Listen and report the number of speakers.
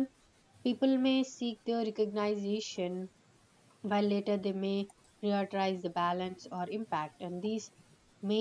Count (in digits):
1